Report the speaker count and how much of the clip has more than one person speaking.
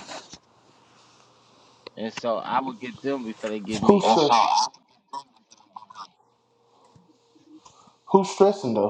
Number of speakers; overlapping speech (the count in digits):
2, about 2%